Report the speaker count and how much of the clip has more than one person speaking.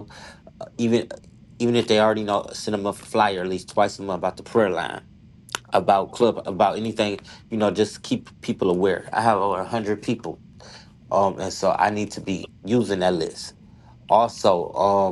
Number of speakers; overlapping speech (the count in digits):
1, no overlap